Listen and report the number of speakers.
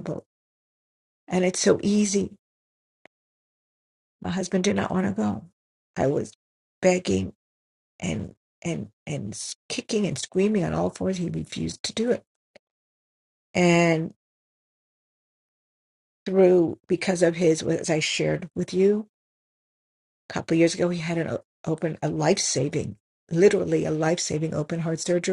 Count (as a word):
one